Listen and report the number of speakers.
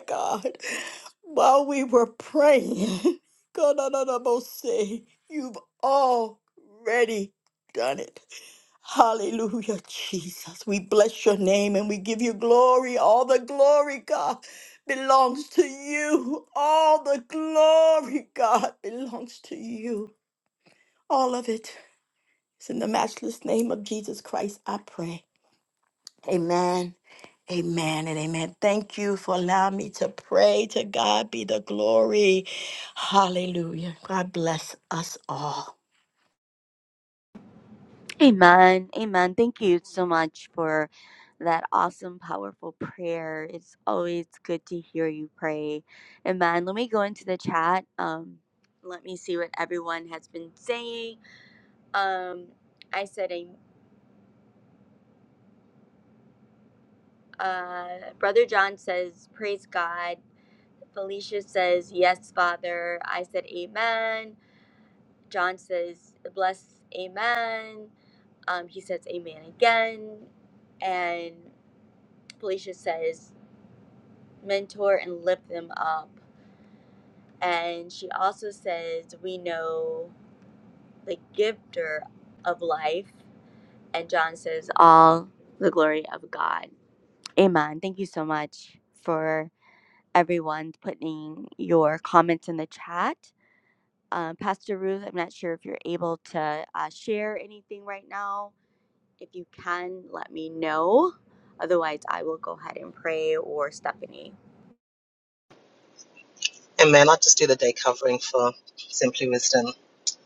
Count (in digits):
3